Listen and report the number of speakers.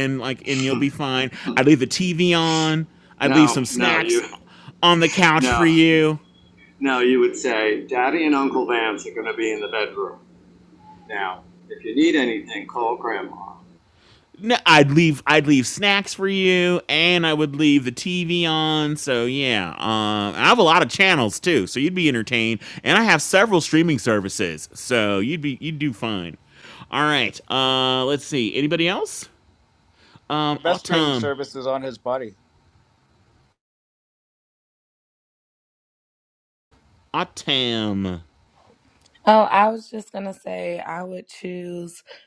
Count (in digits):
4